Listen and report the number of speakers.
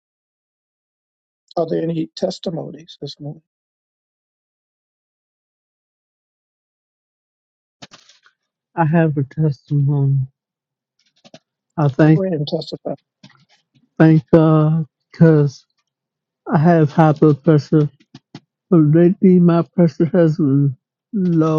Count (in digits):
2